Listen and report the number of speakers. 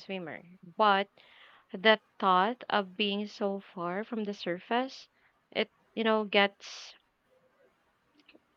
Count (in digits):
1